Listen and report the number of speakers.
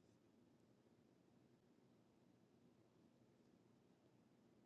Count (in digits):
0